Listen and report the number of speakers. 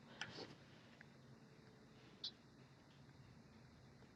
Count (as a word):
zero